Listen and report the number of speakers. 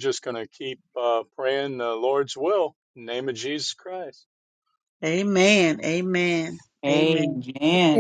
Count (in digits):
3